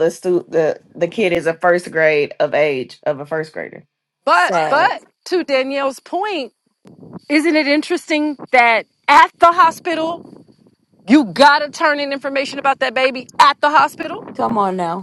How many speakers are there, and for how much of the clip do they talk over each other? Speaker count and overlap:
3, about 3%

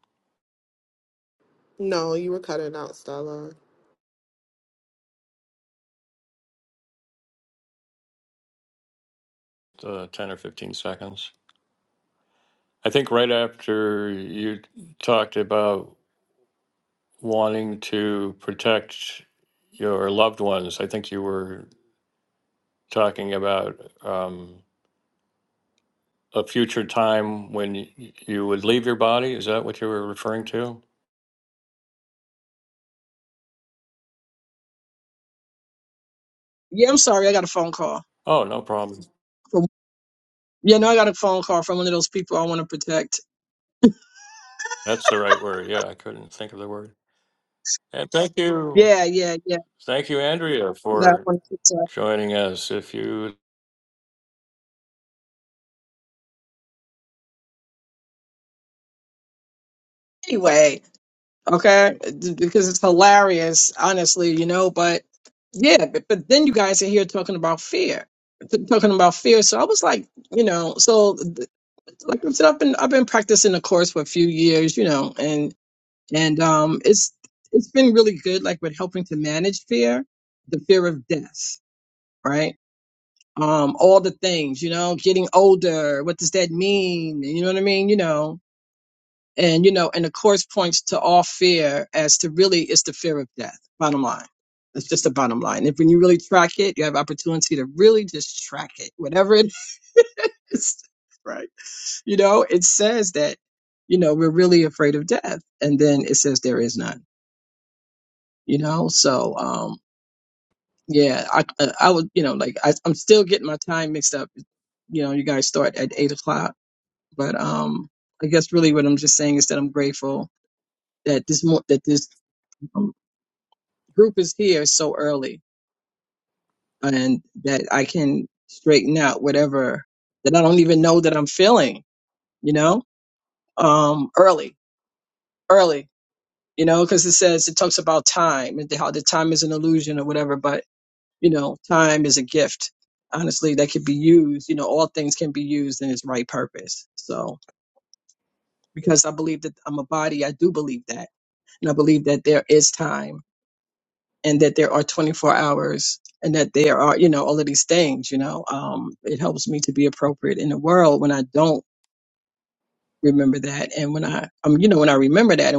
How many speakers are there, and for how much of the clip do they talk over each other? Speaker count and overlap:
3, under 1%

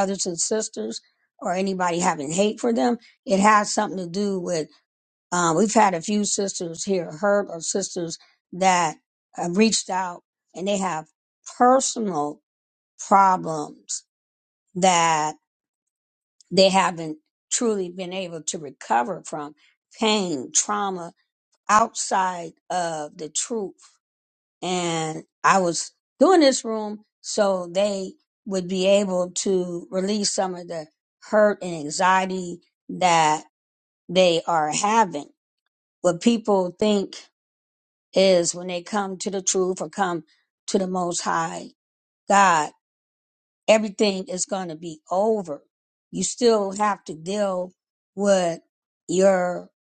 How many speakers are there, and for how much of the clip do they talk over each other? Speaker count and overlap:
1, no overlap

